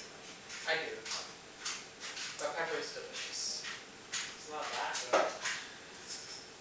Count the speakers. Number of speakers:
two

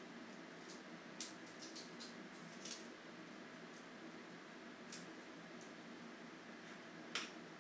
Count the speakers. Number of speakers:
zero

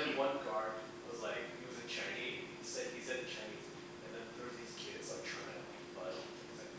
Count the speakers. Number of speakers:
one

